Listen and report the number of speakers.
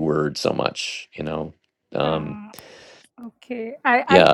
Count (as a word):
two